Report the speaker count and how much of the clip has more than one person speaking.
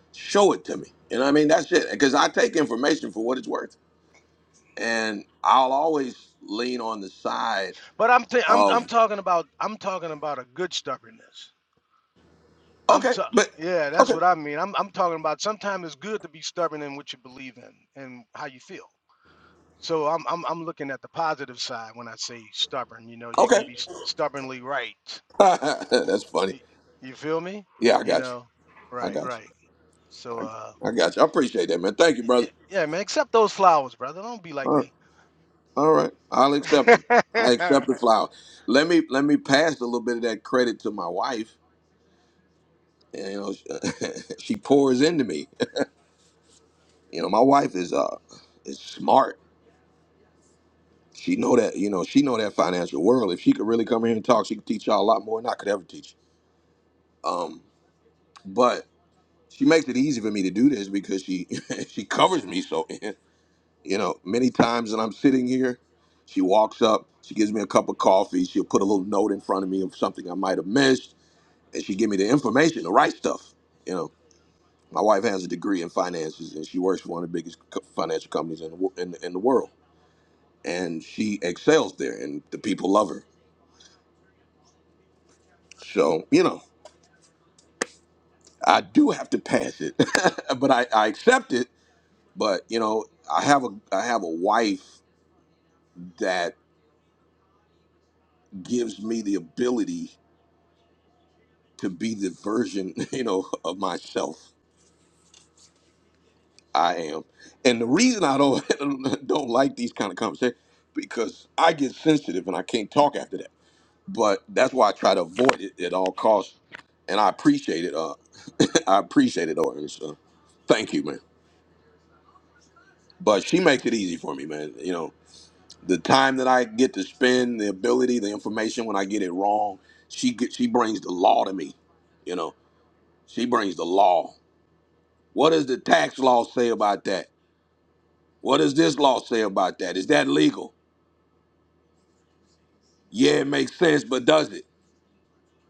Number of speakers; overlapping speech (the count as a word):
two, about 2%